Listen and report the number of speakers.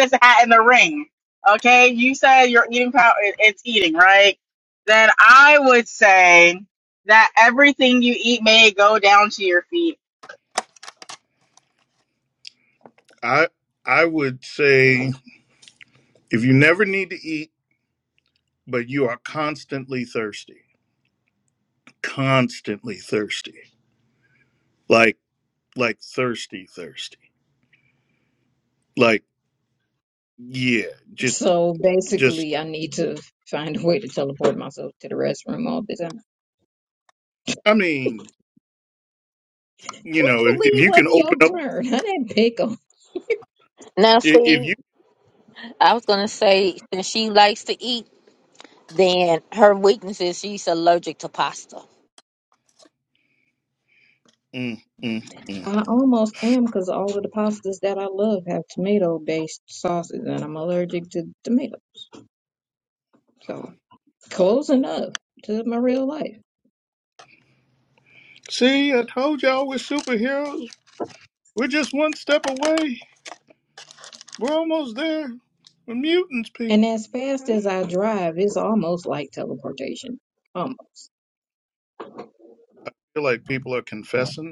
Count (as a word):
four